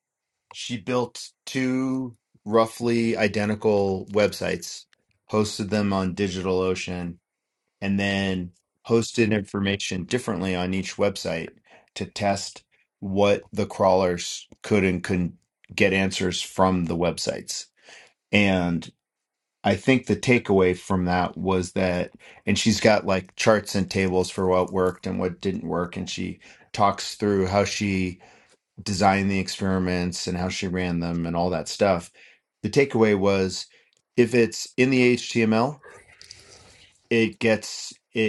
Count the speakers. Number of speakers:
1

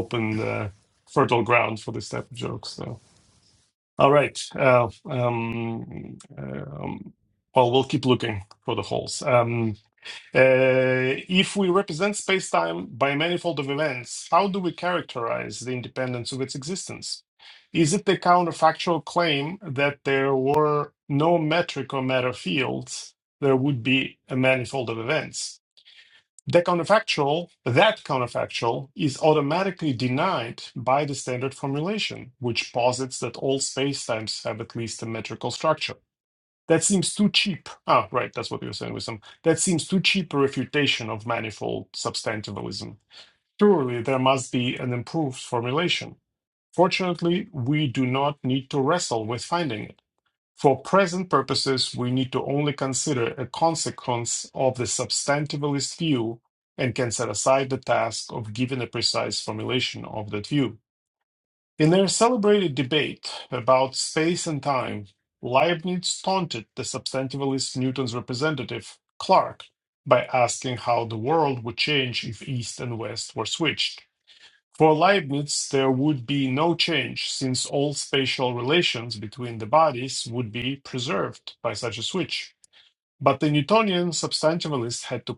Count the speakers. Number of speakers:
1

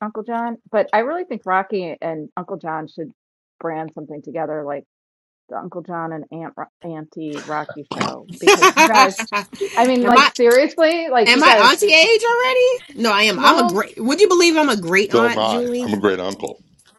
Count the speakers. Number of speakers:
3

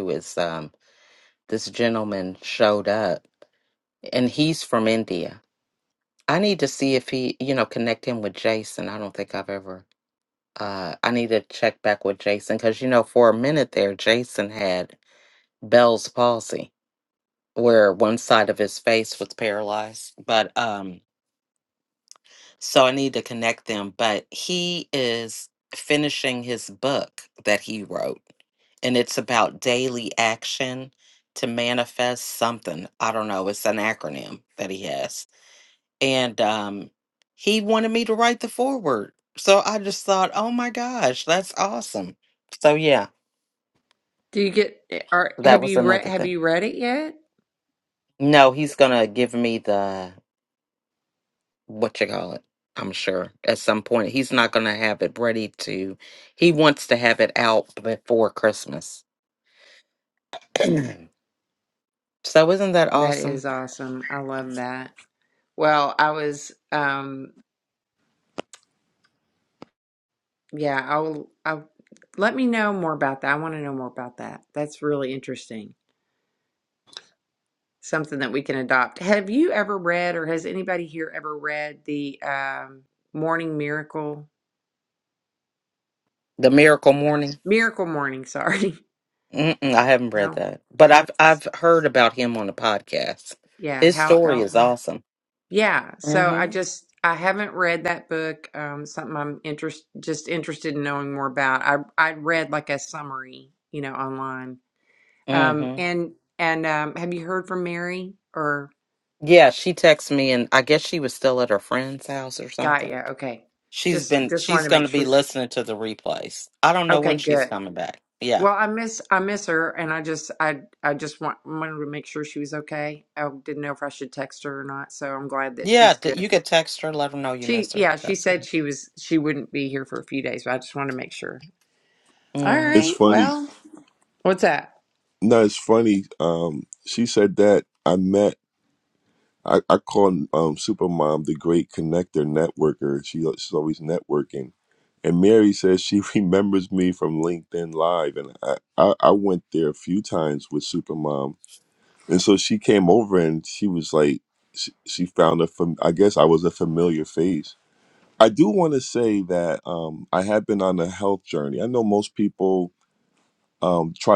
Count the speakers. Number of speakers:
3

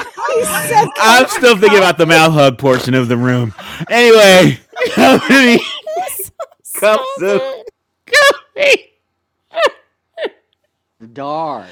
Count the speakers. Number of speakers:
3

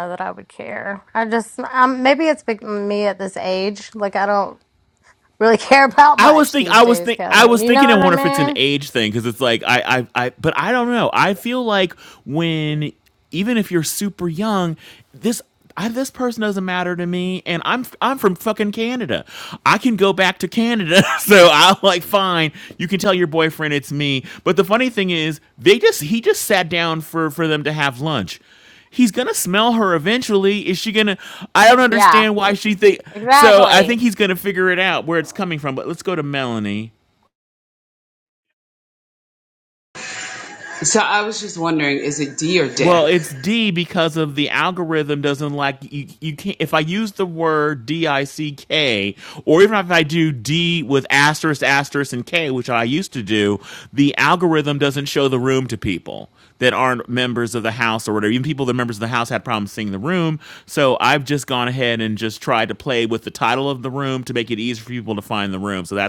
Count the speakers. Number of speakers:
3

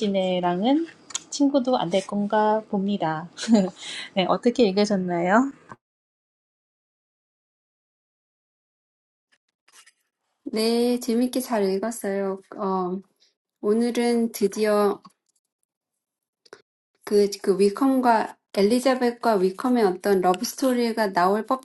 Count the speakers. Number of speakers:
2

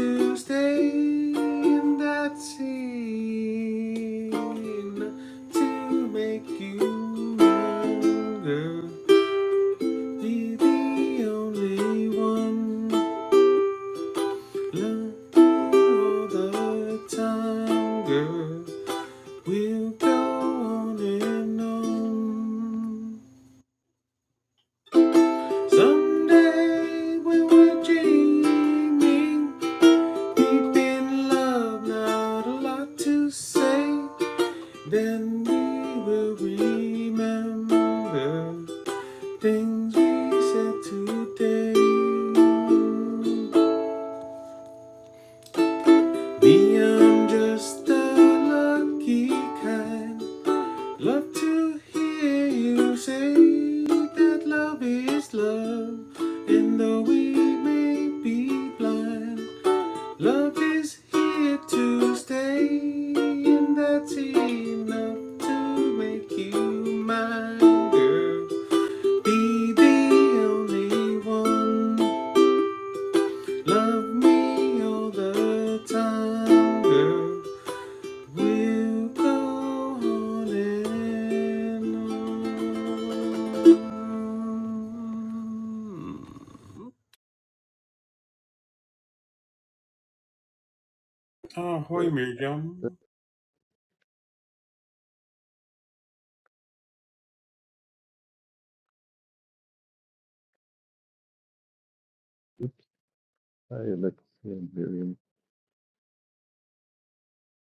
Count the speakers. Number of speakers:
2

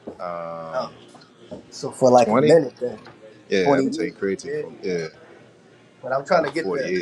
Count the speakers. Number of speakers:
2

